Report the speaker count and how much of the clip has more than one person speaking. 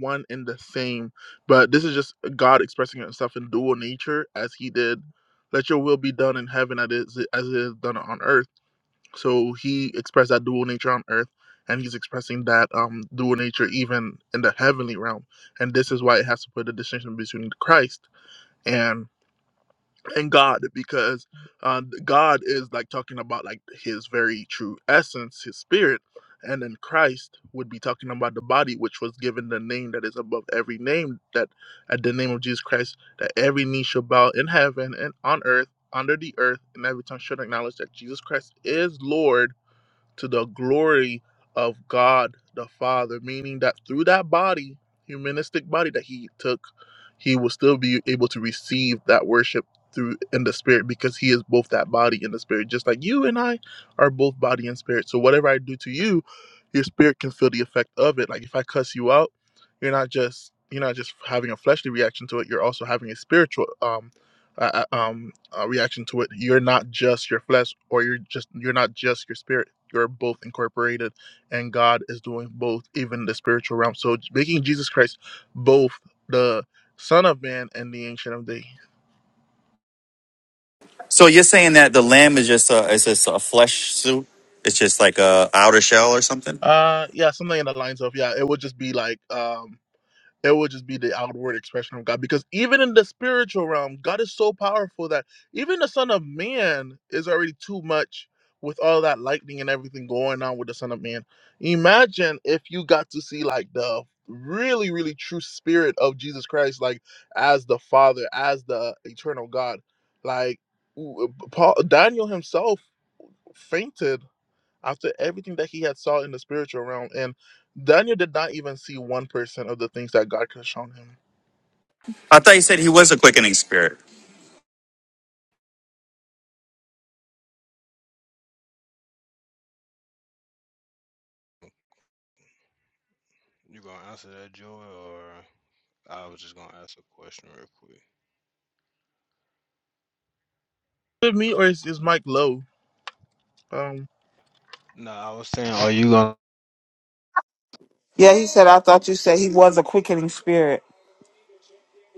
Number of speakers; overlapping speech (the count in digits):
4, under 1%